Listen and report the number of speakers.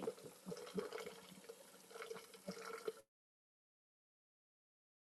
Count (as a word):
zero